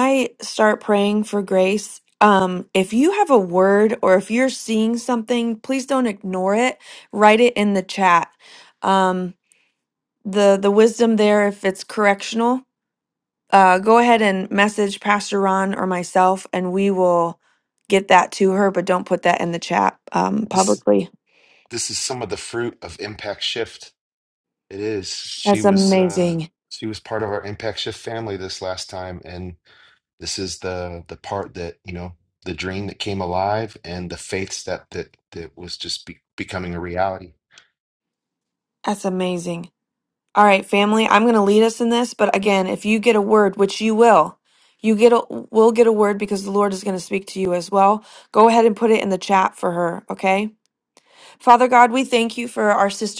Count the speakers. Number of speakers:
2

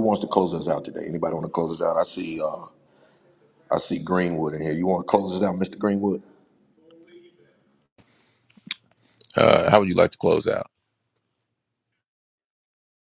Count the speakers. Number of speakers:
2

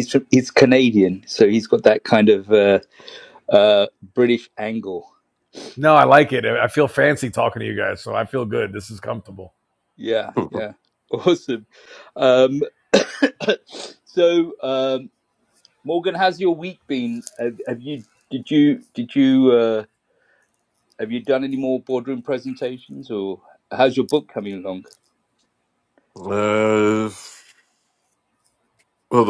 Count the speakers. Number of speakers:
3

